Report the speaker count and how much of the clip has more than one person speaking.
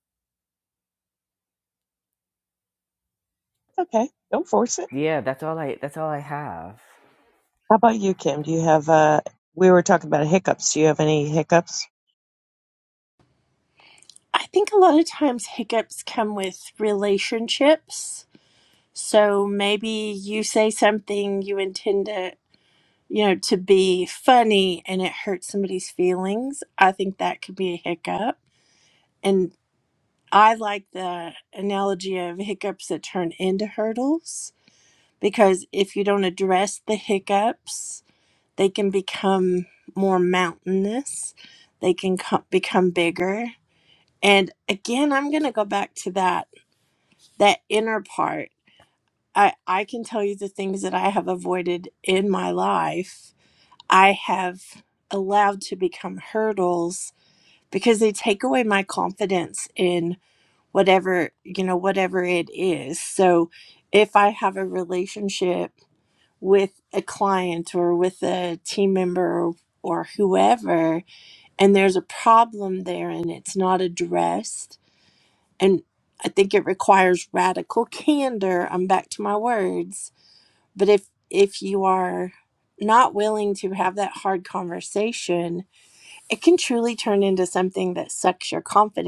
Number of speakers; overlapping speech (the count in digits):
3, no overlap